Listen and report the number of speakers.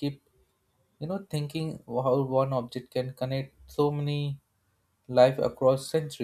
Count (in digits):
1